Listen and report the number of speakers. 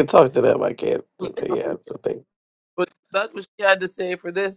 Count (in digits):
2